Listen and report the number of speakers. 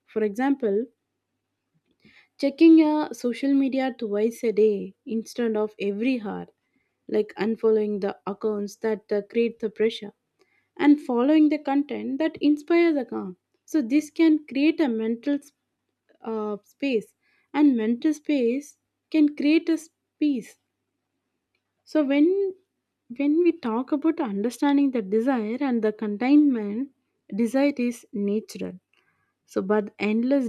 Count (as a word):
one